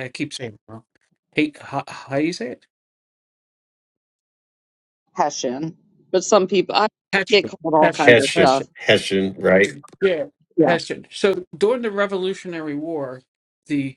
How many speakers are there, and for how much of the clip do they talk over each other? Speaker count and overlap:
3, about 9%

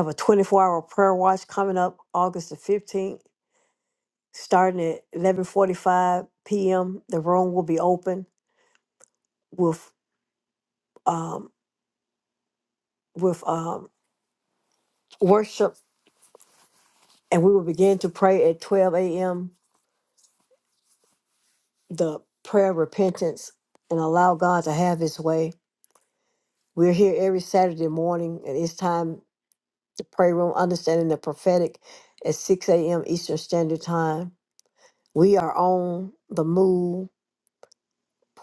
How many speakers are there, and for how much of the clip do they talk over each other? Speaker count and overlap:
1, no overlap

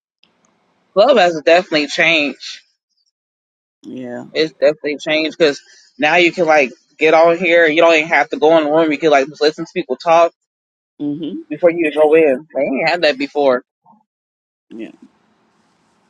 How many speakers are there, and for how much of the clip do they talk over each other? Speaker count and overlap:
2, no overlap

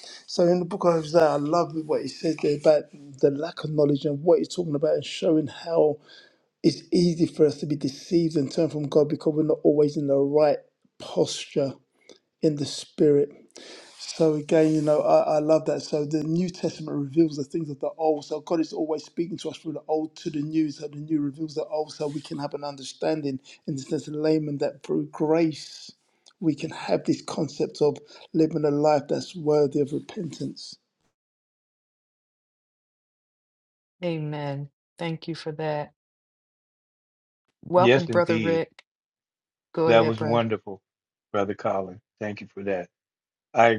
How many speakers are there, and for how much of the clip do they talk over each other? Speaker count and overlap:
3, about 3%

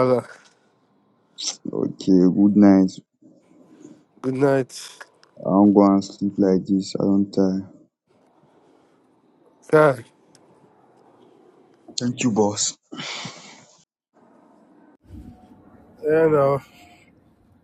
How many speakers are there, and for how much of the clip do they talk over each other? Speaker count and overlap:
2, no overlap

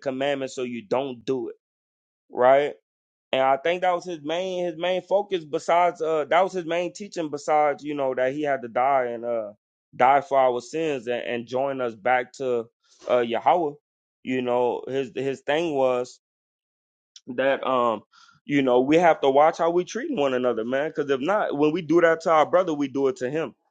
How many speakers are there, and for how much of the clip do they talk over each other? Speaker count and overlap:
1, no overlap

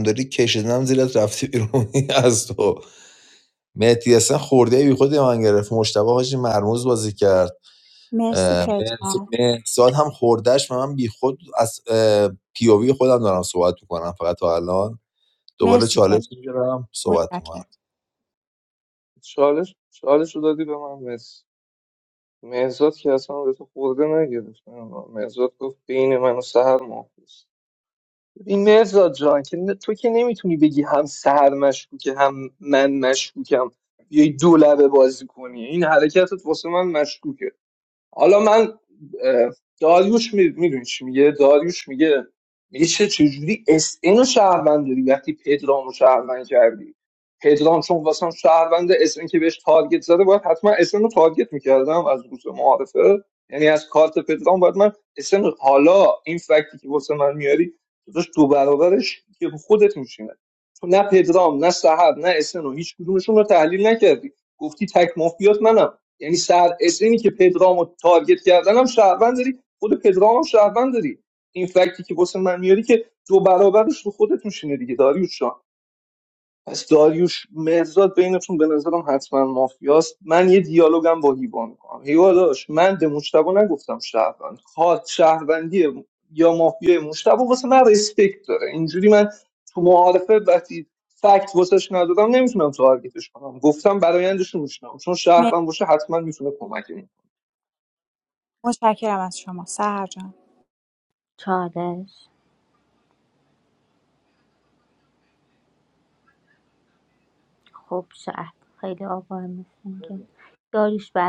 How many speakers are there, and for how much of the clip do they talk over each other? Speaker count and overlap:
4, about 2%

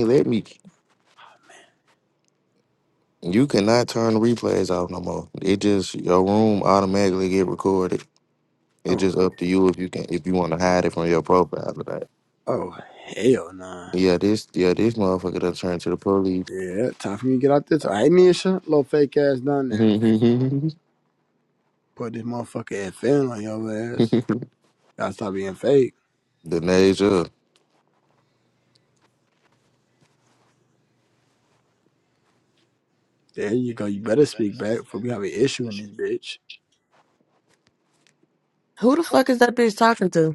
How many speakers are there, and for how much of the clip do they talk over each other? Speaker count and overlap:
3, about 1%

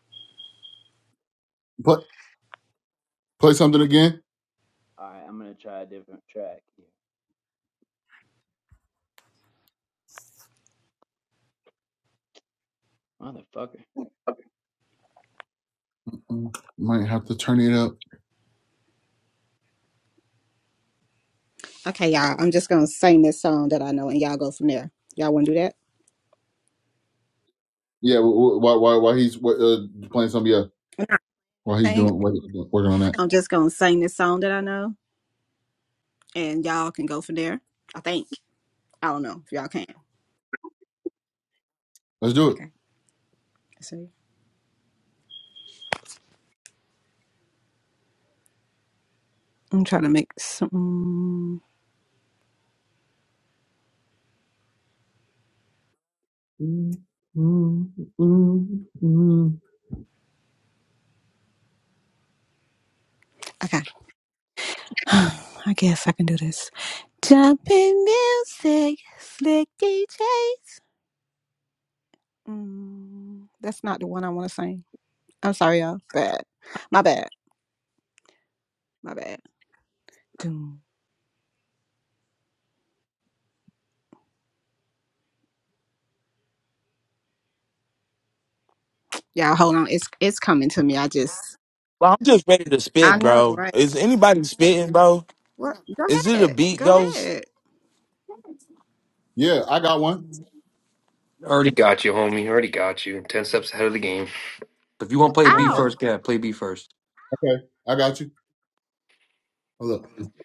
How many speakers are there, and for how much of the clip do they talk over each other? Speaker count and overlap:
5, about 2%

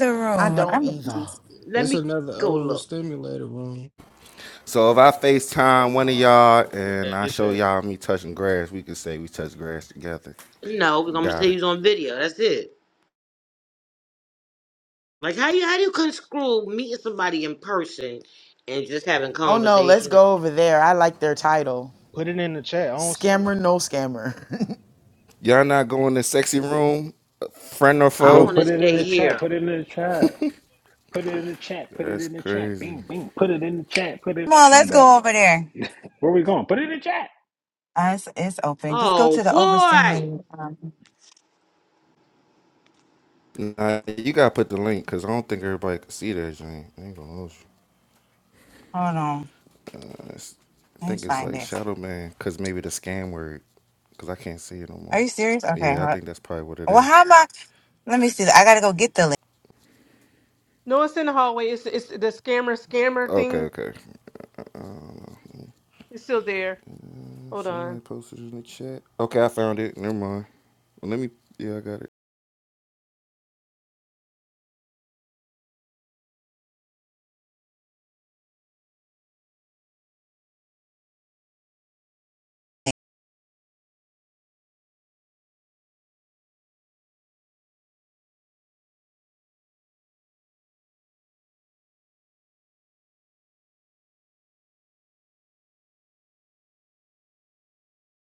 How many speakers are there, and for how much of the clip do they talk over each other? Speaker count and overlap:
8, about 10%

